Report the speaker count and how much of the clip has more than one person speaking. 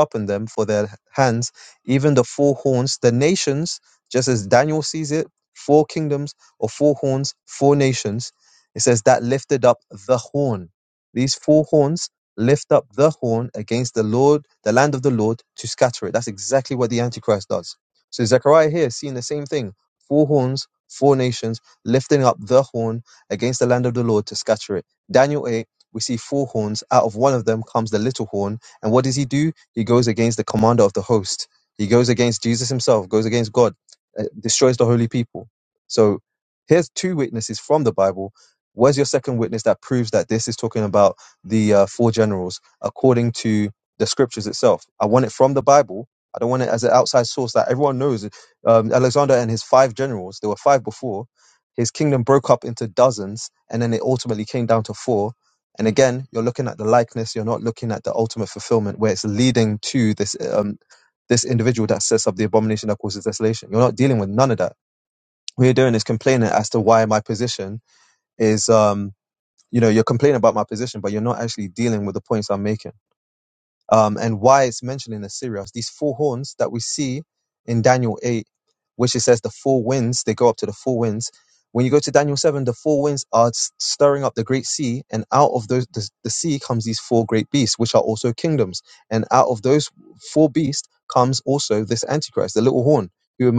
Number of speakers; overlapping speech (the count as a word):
one, no overlap